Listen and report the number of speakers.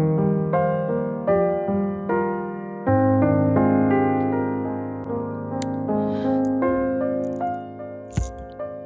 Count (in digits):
0